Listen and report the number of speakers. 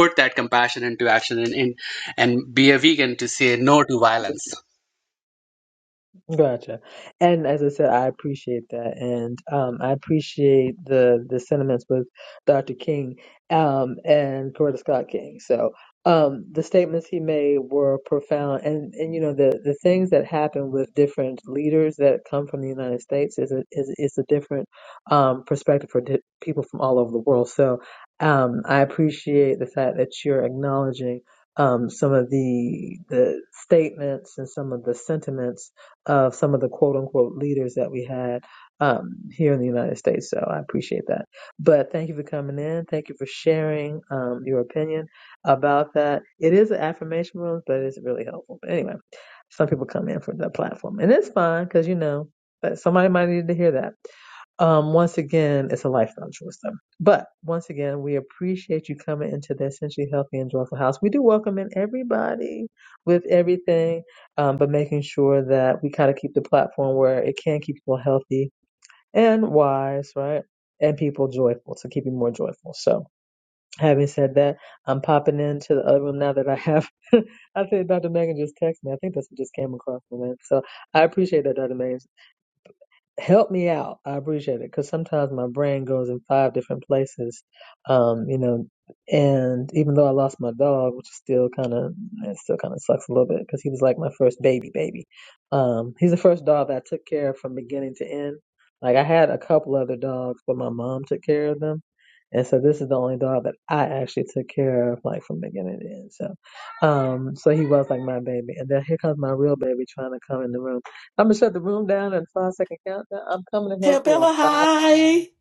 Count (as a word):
three